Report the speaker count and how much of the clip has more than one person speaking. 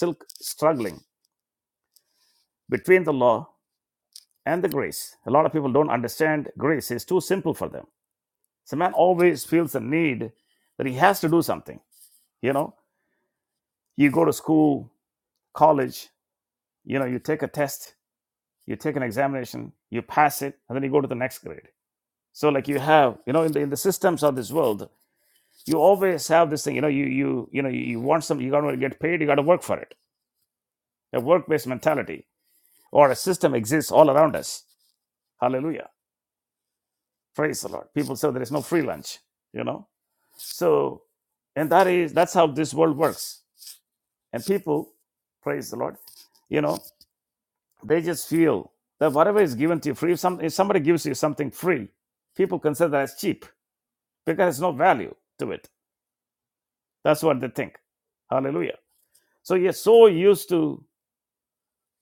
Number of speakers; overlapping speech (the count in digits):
1, no overlap